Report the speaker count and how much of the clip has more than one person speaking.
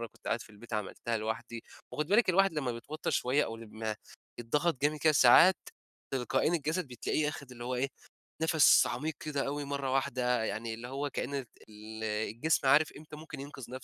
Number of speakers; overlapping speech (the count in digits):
1, no overlap